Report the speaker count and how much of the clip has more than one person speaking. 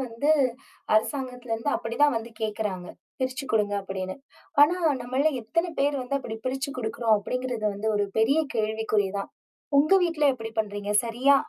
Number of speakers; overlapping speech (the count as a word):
one, no overlap